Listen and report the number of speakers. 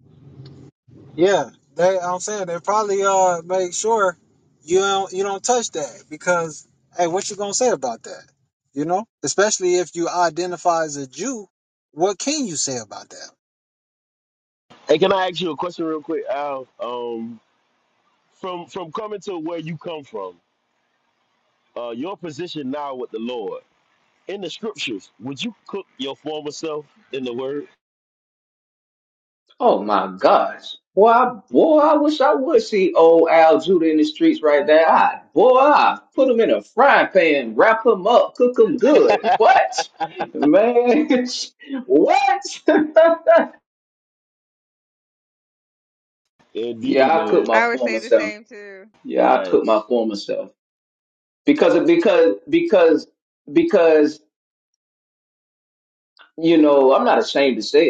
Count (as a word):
four